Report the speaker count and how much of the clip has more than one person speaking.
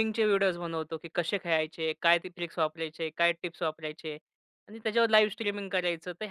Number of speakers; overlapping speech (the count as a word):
one, no overlap